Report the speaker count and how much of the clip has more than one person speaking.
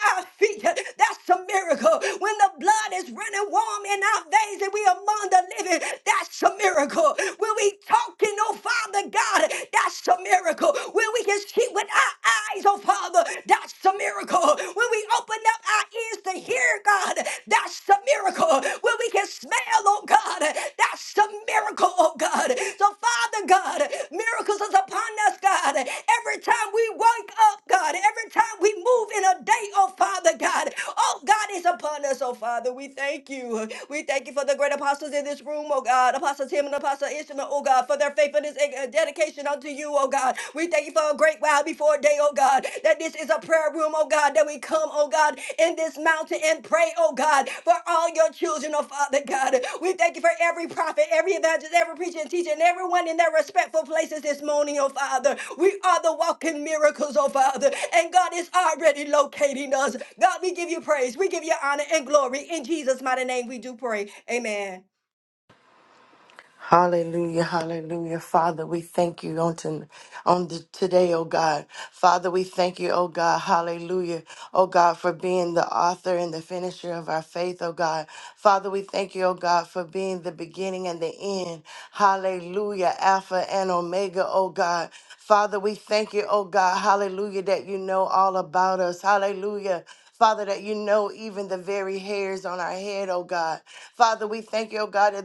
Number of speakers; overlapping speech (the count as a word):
two, no overlap